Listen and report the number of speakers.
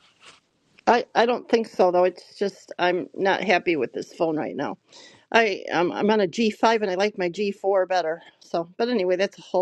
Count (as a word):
one